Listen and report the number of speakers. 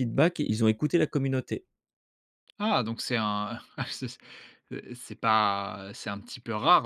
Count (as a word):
two